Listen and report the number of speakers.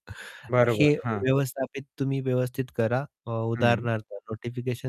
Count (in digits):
2